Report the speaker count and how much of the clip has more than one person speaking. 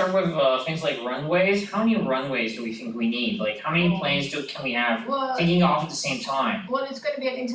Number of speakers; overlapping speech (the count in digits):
2, about 7%